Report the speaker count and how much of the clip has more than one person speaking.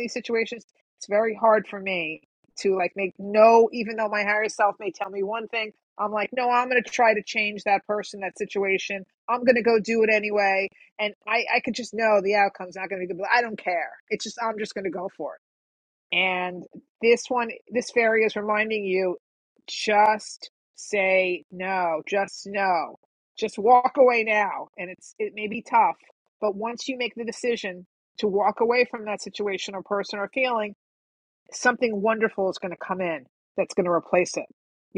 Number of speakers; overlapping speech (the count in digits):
1, no overlap